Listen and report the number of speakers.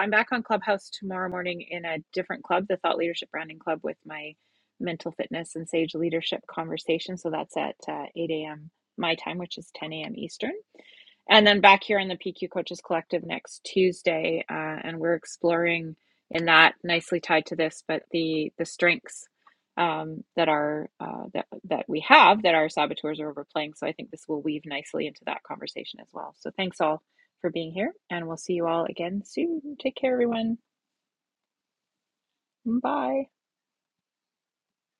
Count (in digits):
1